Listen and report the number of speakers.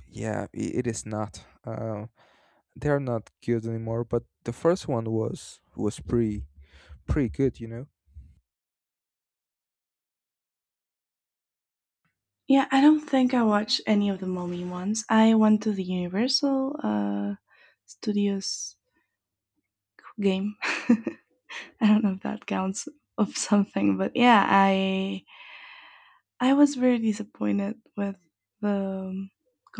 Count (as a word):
two